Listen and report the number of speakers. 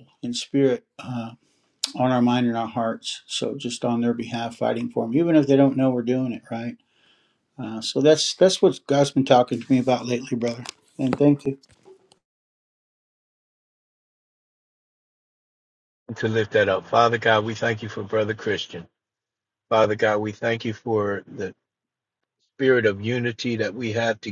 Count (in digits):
2